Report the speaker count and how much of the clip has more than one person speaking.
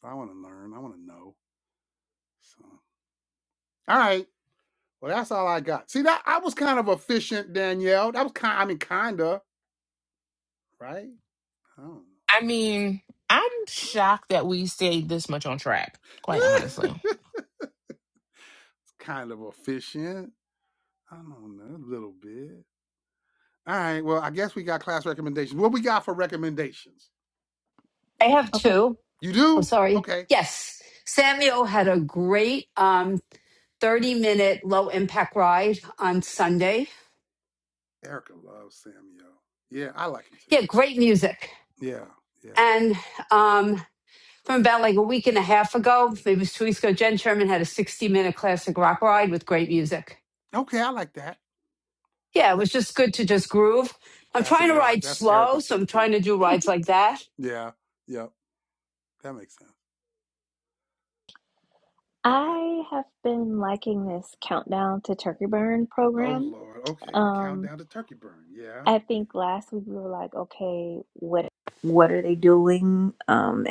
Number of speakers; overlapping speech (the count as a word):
four, about 6%